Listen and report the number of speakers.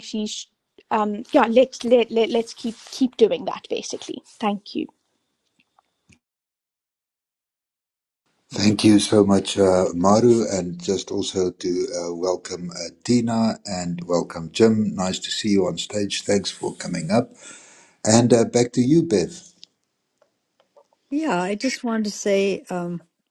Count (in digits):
3